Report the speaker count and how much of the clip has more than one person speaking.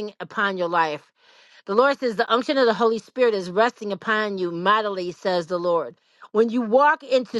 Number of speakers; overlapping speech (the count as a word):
one, no overlap